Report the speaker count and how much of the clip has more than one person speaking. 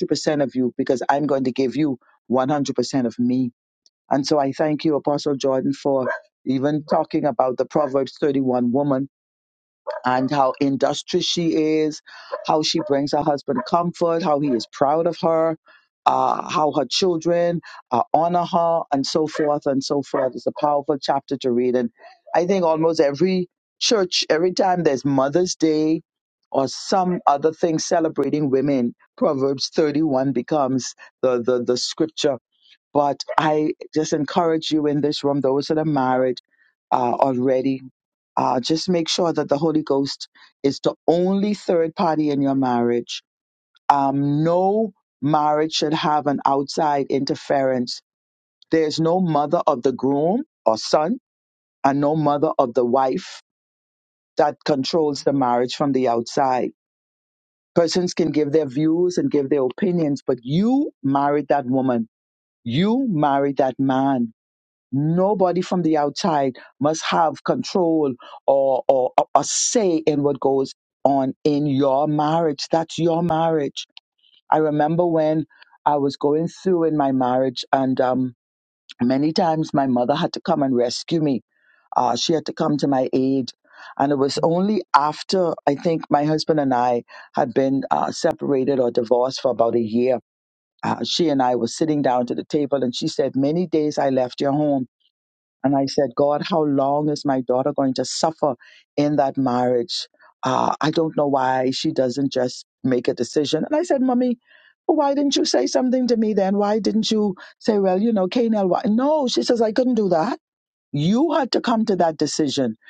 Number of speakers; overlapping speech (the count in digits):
1, no overlap